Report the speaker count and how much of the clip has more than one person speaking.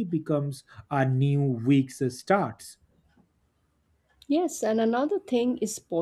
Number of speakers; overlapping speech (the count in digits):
2, no overlap